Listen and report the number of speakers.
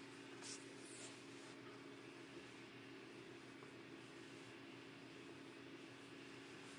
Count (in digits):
0